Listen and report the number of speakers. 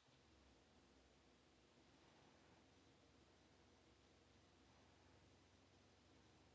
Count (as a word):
zero